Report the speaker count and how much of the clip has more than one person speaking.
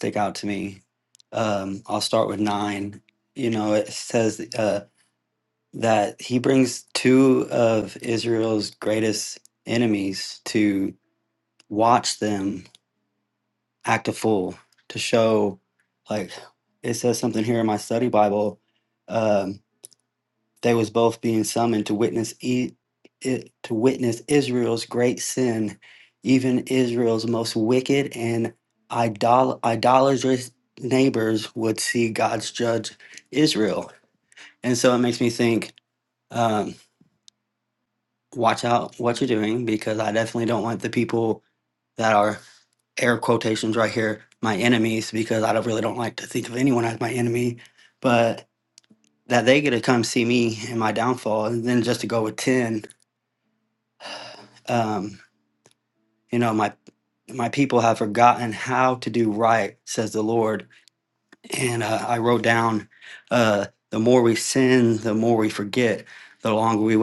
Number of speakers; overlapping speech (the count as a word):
one, no overlap